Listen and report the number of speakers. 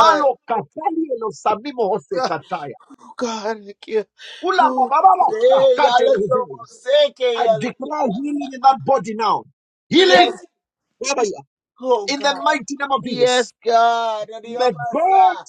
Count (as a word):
two